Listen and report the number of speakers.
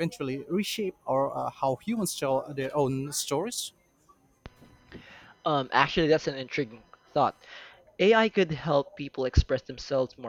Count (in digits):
2